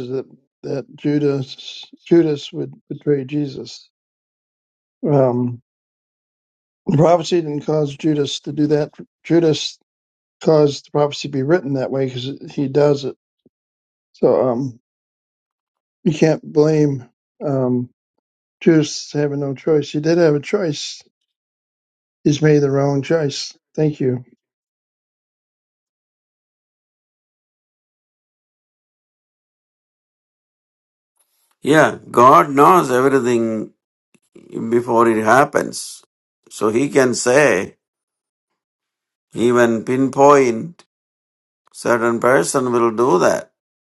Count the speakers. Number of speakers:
two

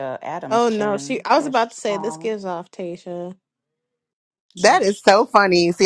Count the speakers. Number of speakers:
three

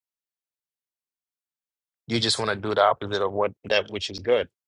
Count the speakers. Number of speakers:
one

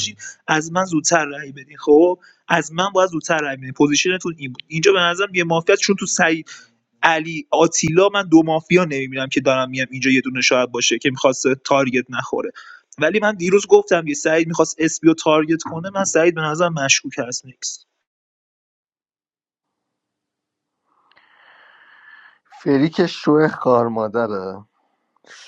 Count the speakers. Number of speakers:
two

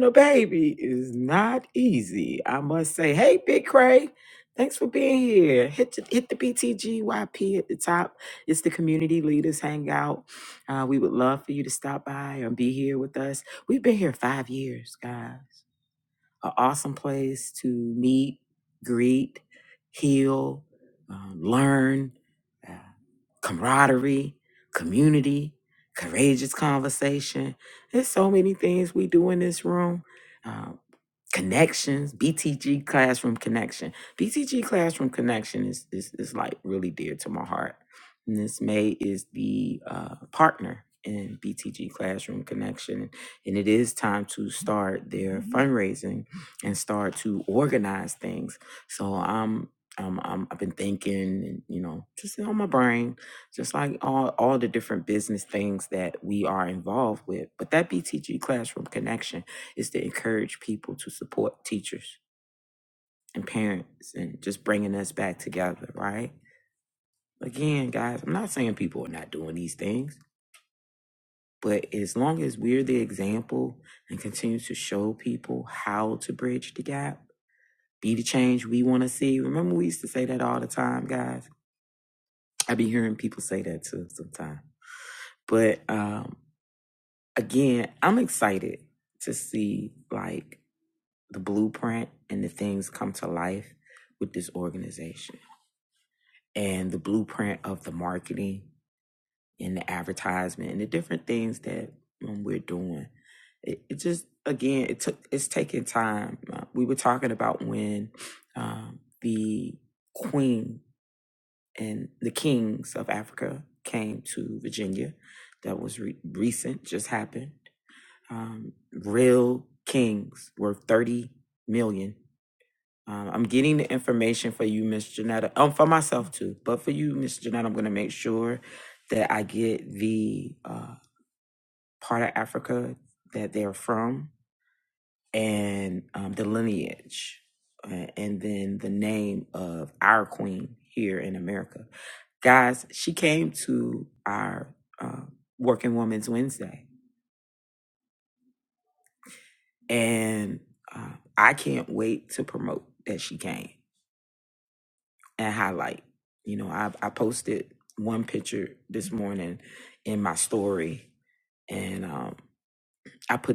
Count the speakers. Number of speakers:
one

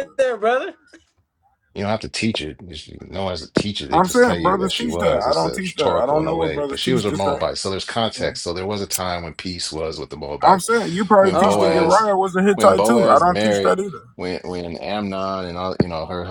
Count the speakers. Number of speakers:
three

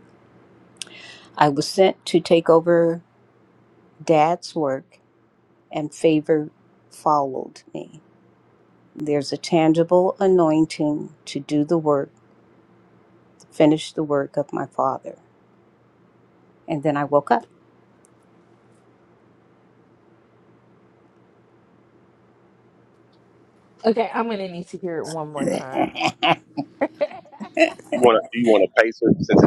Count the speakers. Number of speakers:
three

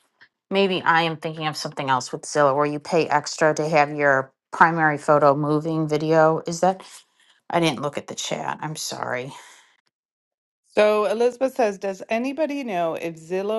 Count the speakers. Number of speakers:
two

